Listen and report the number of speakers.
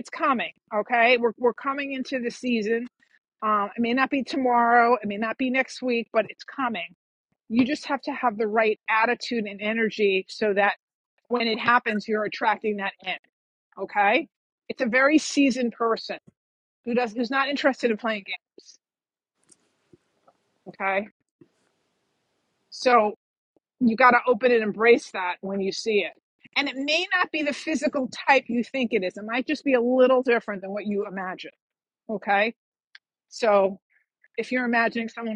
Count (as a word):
one